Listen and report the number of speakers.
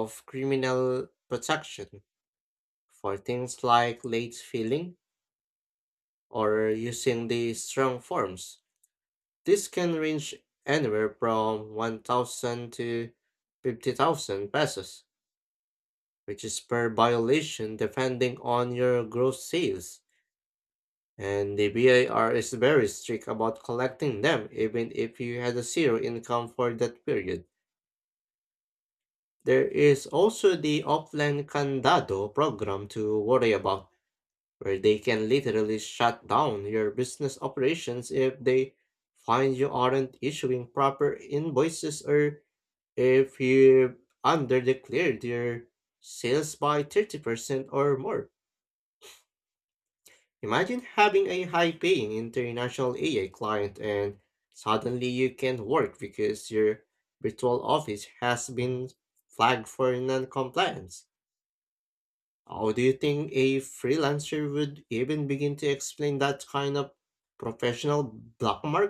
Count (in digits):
1